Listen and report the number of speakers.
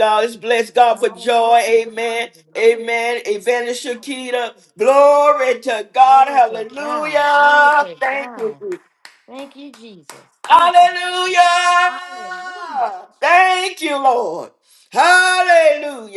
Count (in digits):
2